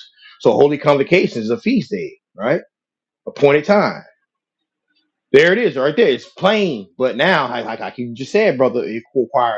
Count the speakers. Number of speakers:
1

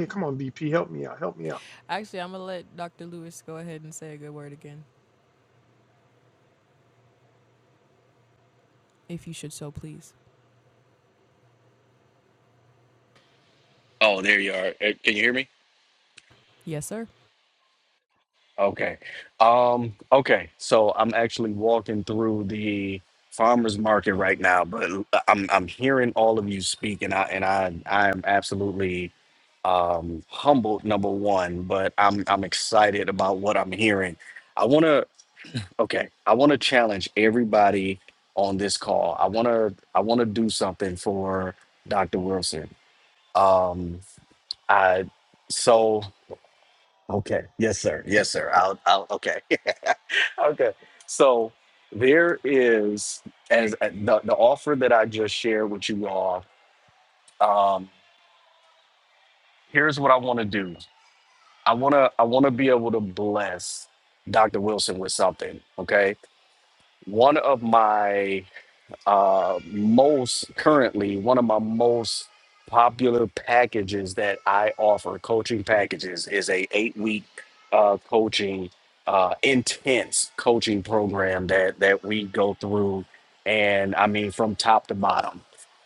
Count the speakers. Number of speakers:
3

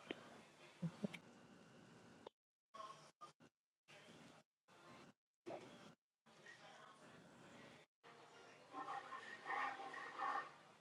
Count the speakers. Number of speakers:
0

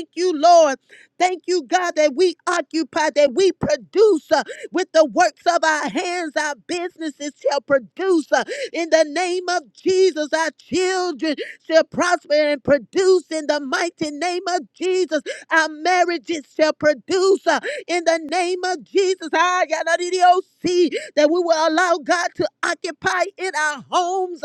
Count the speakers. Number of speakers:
1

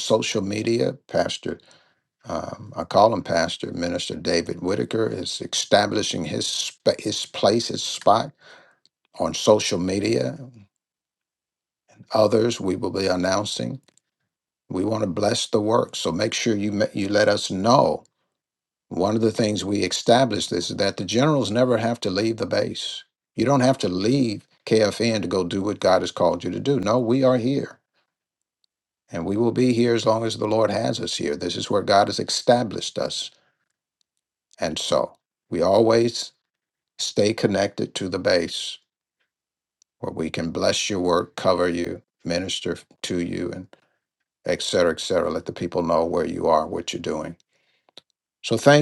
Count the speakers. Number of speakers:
1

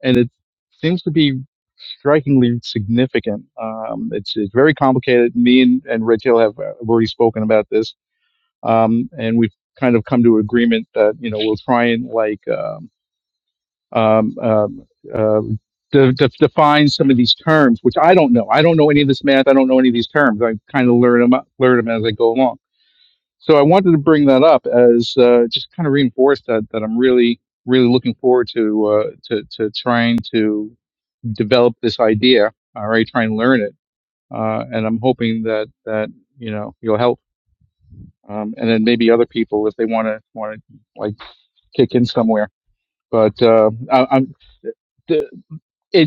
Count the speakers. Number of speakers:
1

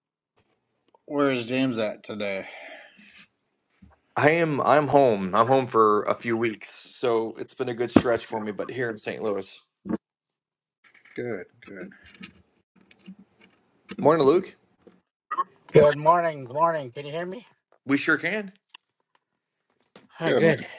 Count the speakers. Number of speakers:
3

